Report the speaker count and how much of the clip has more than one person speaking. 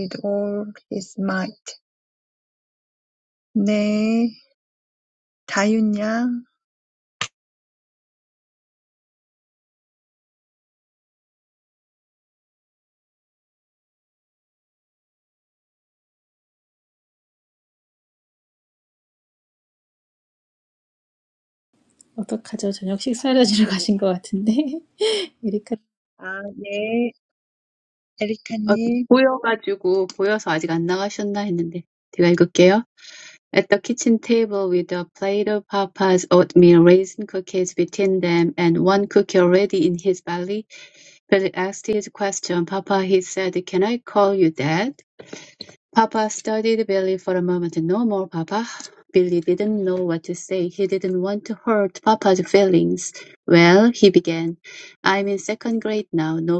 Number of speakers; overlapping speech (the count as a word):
three, under 1%